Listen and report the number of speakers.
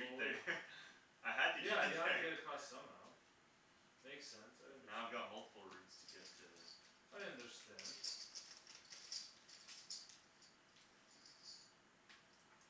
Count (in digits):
2